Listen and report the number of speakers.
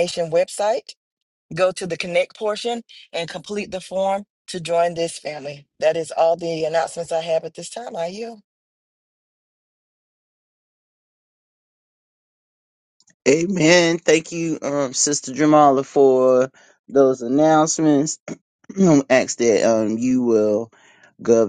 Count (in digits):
2